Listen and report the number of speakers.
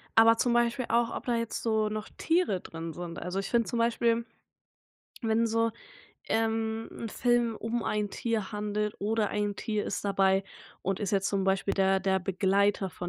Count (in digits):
1